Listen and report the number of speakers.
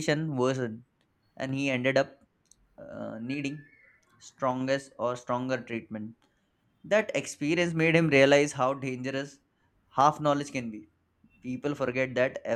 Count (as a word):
one